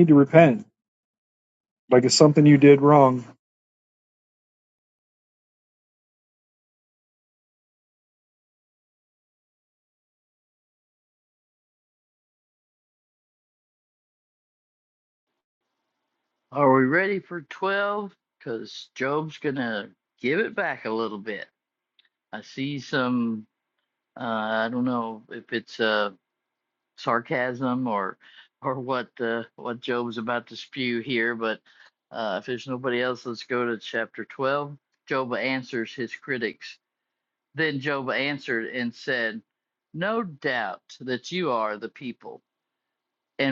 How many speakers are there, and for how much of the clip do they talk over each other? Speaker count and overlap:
2, no overlap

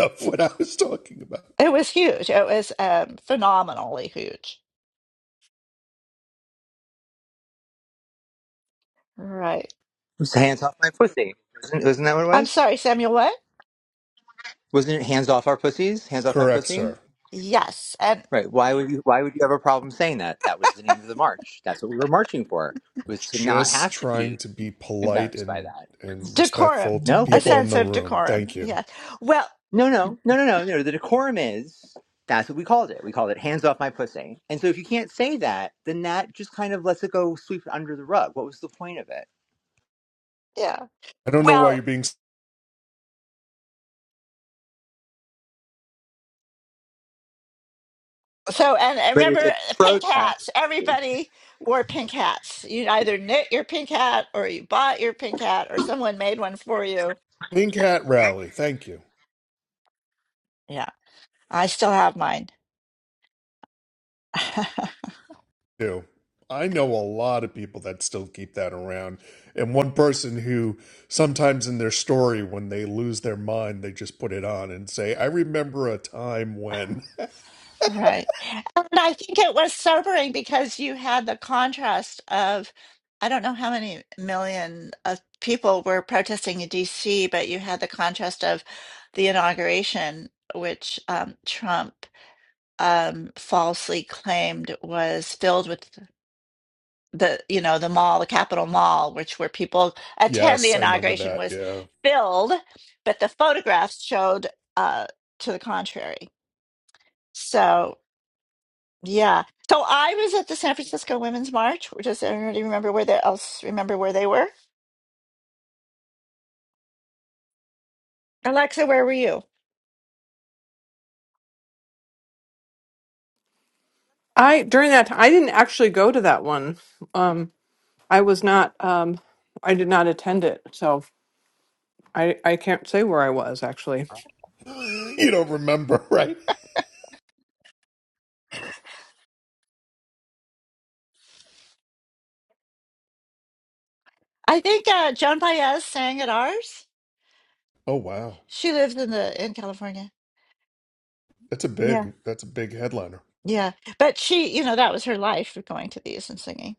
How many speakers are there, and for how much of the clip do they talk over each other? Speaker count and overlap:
4, about 5%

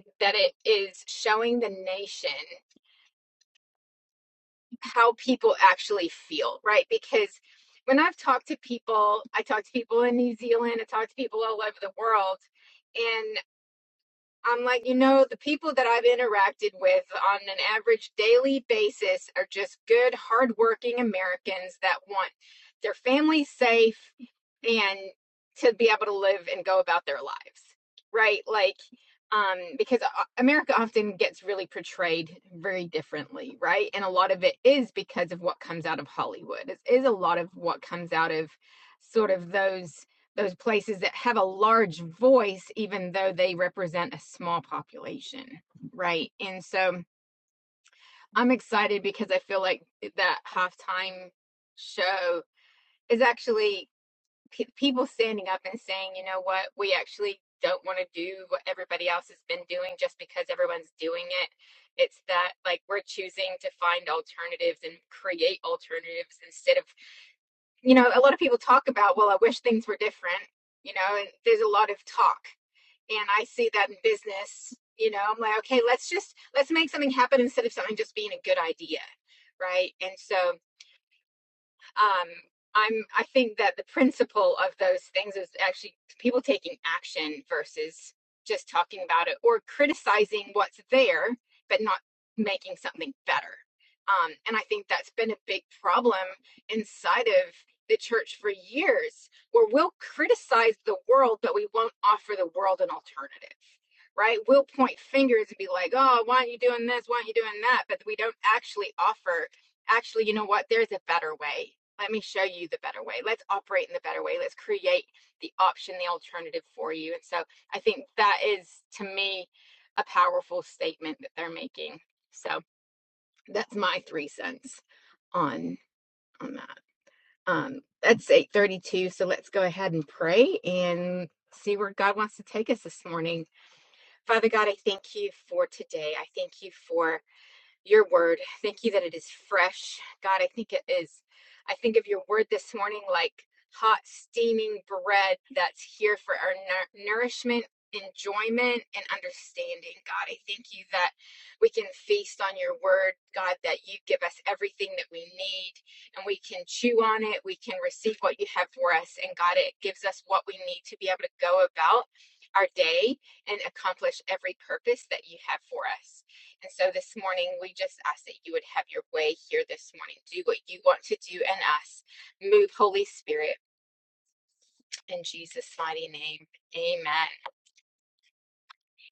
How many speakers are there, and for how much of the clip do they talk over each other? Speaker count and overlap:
1, no overlap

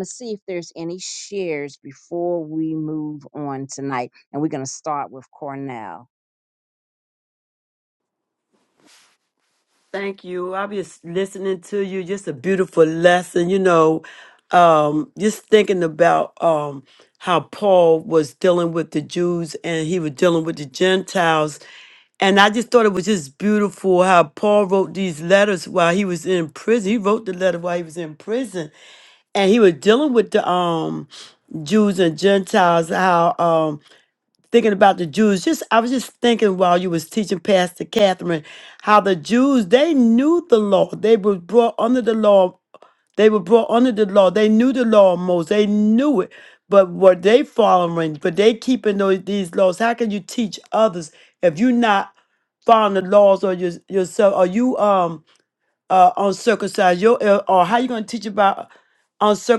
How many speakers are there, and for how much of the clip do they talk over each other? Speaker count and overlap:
2, no overlap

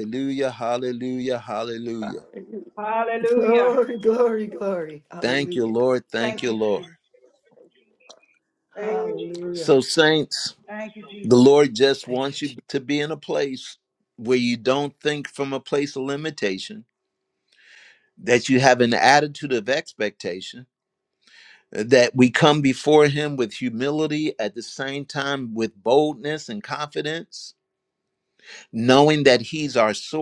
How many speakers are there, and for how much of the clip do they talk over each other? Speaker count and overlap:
3, about 10%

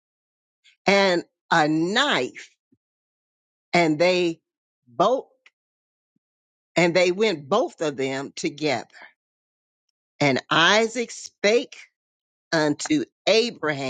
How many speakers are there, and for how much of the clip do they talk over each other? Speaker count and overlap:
1, no overlap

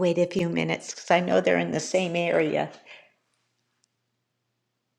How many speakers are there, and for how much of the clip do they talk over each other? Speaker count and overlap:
1, no overlap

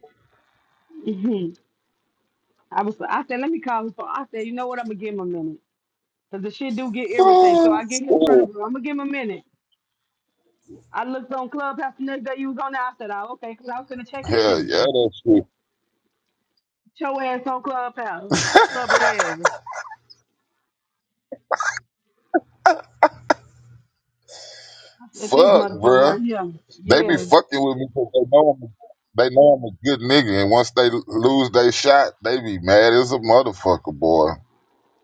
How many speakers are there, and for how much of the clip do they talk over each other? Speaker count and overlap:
2, about 9%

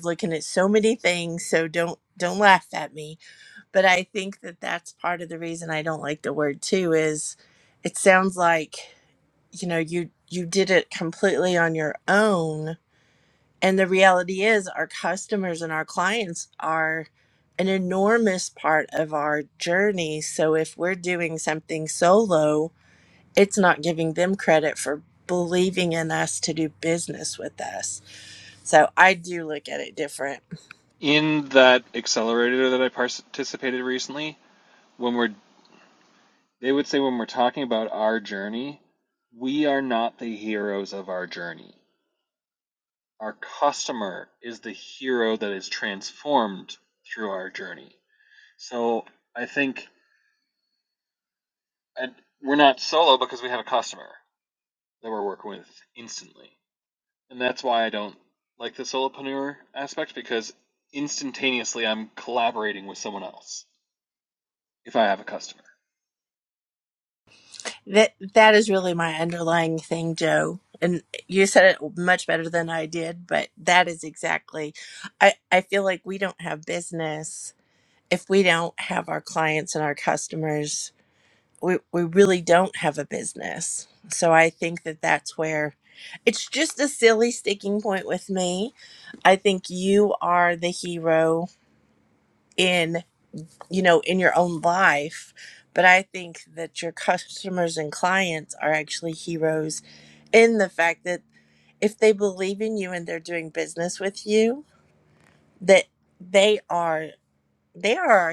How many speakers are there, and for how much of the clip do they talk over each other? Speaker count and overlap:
2, no overlap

